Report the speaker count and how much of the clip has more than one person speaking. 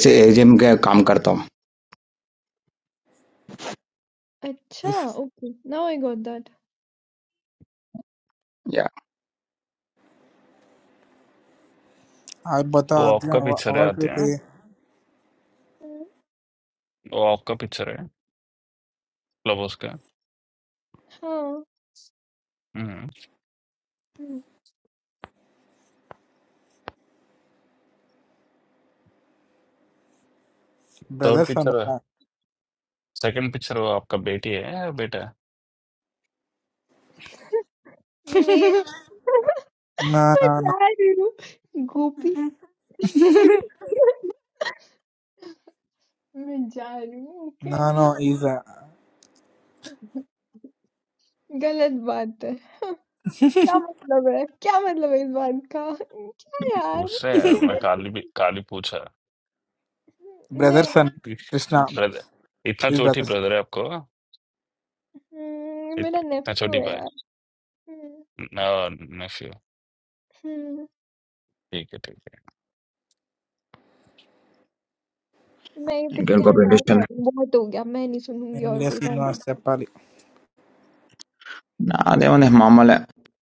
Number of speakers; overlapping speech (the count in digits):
4, about 9%